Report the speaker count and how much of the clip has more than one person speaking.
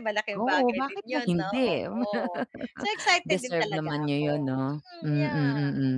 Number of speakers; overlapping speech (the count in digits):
2, about 57%